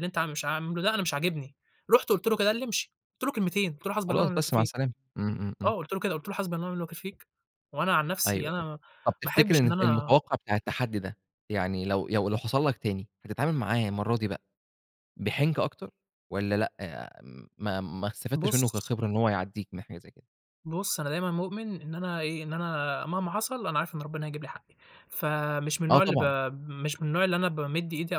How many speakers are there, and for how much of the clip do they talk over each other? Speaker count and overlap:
2, about 10%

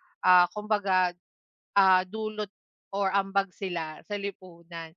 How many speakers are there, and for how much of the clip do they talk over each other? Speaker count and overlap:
1, no overlap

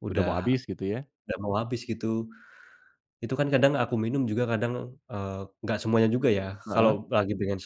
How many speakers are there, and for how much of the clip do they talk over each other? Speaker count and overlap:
2, about 7%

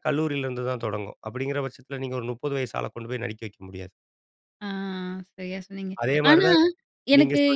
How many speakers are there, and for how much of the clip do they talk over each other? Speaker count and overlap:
2, about 9%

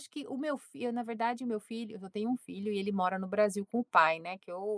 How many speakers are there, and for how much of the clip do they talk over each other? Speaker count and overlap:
1, no overlap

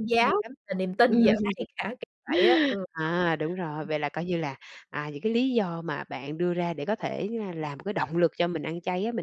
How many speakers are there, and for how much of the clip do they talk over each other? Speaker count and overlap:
2, about 2%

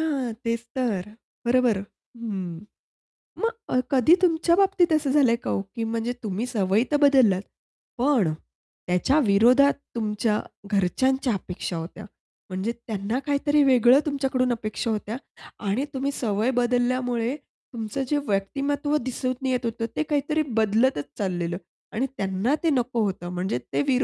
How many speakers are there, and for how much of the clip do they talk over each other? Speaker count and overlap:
1, no overlap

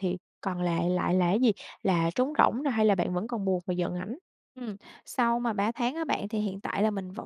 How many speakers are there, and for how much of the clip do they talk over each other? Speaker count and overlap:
2, no overlap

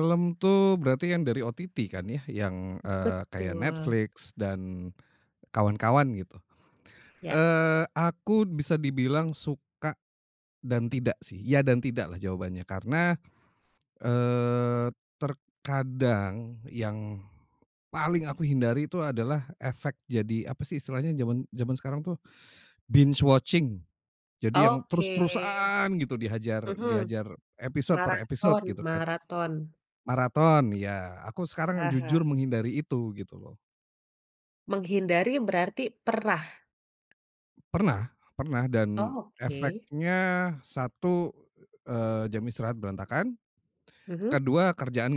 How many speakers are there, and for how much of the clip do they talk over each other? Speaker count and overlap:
2, about 10%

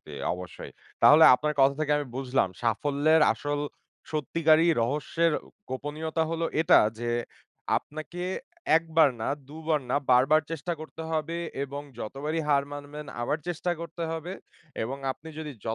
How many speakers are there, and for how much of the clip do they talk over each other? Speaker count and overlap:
1, no overlap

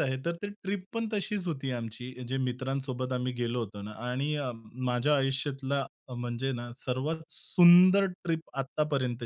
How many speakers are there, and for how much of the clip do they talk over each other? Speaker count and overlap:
1, no overlap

